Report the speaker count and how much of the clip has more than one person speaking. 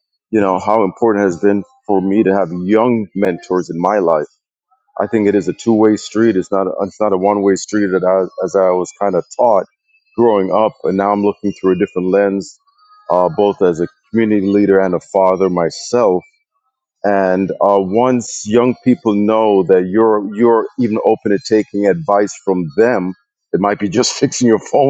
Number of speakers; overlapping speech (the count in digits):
1, no overlap